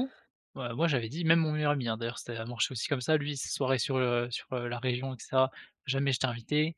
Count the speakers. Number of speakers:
1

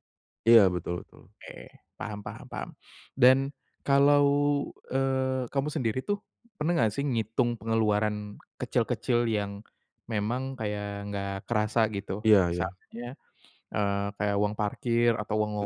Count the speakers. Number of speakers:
2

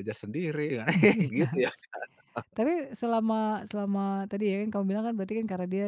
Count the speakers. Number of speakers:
2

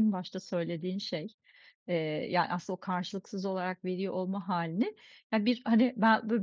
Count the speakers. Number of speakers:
1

